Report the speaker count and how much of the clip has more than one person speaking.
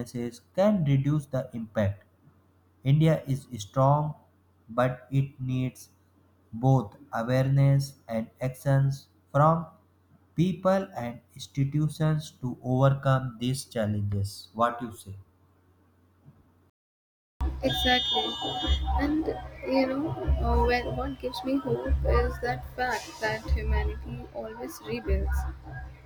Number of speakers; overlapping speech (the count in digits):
2, no overlap